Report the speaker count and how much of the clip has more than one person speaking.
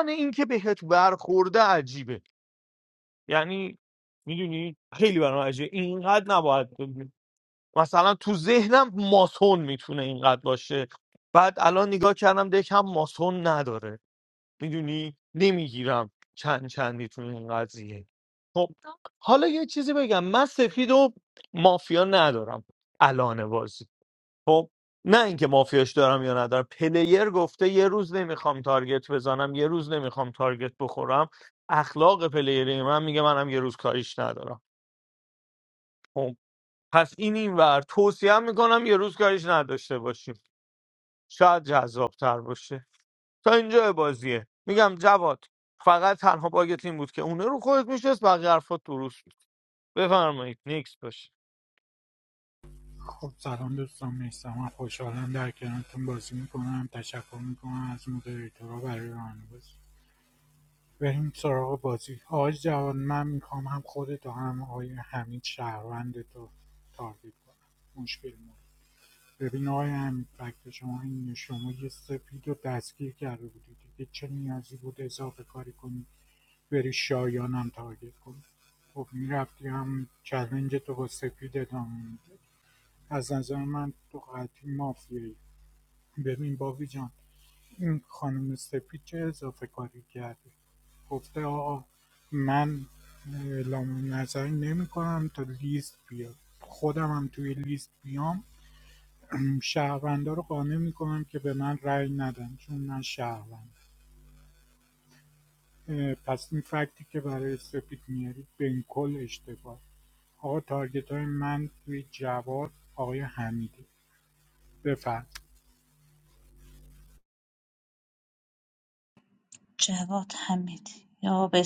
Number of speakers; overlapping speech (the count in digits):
3, no overlap